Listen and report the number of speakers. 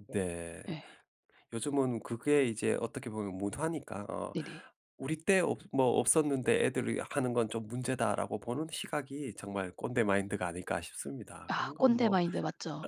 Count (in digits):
2